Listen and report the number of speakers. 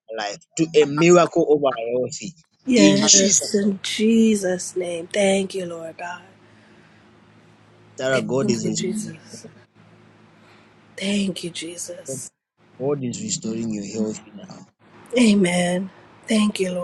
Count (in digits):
2